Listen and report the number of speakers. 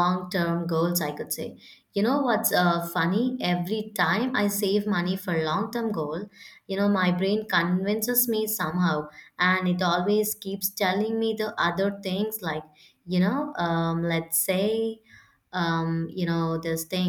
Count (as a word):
one